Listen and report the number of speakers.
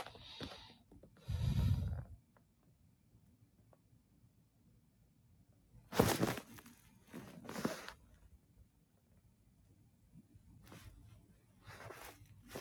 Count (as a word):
zero